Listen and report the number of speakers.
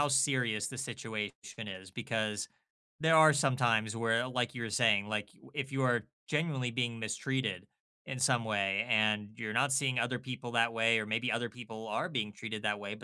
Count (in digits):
1